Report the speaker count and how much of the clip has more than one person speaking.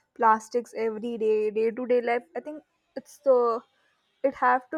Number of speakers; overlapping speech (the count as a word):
one, no overlap